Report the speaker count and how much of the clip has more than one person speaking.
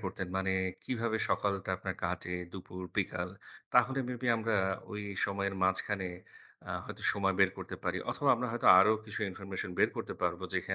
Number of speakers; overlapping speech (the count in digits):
1, no overlap